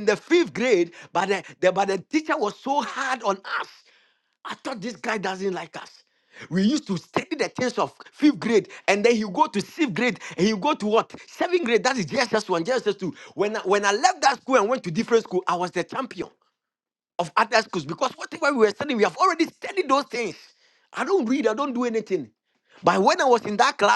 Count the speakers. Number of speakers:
one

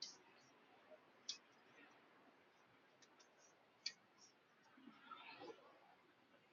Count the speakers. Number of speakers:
zero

